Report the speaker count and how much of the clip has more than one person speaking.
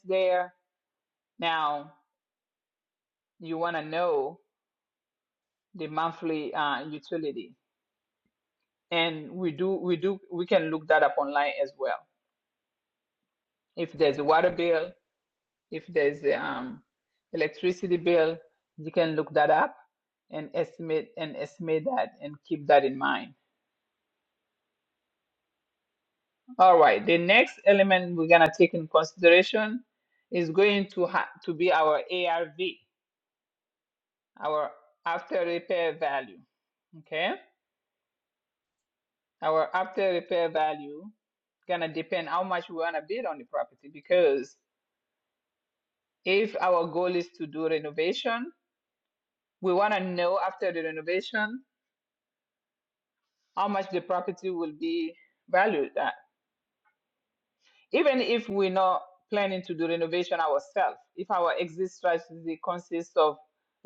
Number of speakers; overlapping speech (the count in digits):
1, no overlap